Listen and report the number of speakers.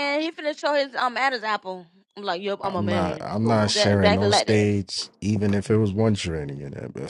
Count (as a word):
two